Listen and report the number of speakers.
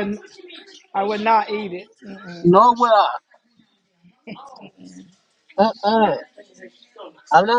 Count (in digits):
2